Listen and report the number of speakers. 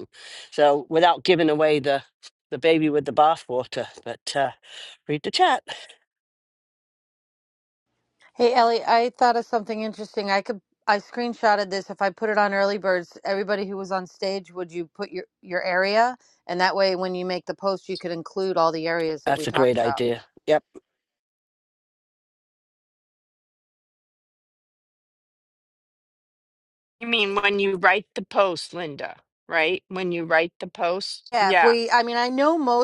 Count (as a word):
three